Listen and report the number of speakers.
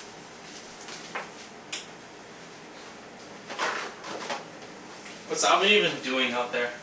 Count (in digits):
1